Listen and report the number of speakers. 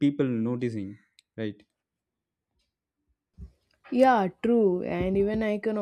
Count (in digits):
2